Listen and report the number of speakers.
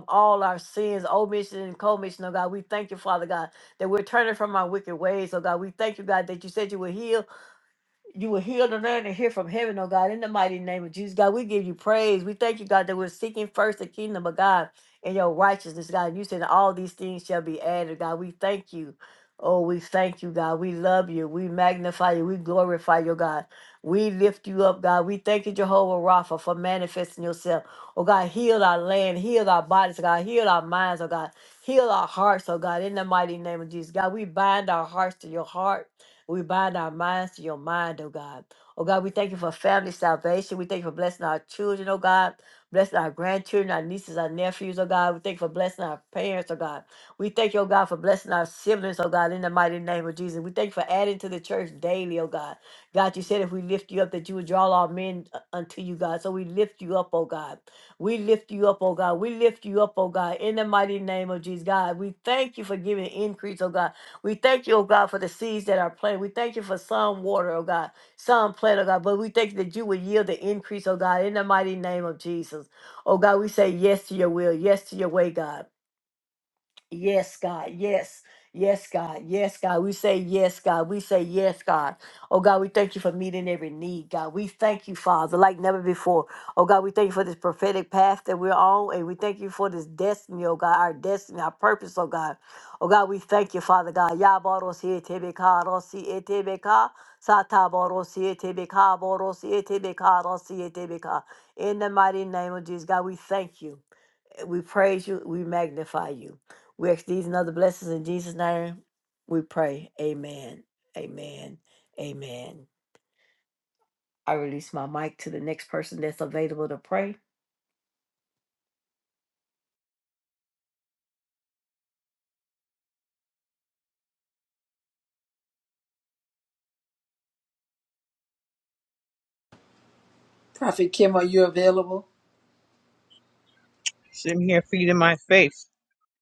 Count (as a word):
three